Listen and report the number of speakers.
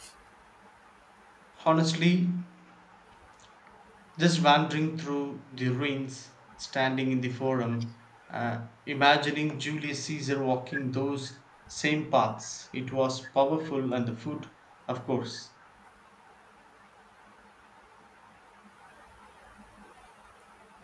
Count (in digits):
1